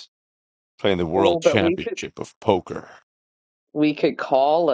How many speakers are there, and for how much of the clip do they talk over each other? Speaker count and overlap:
2, about 17%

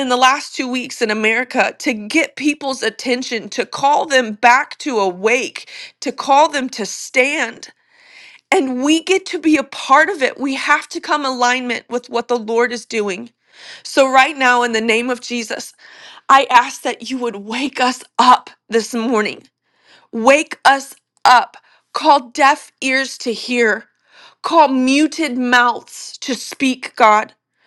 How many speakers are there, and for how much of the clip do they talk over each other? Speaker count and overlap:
1, no overlap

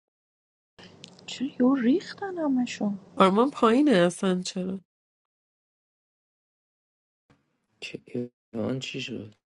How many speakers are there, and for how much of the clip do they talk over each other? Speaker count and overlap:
3, no overlap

